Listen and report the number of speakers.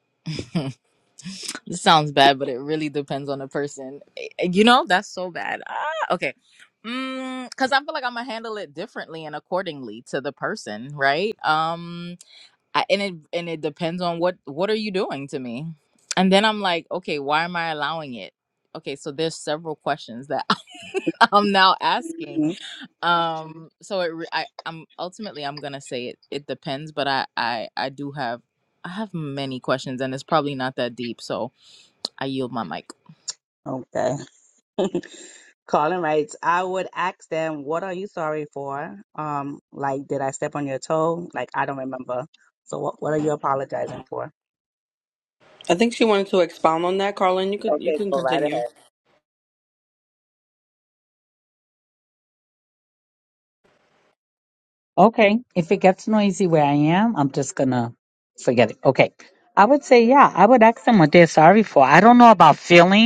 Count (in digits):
4